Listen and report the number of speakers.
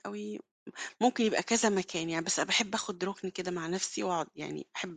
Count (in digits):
1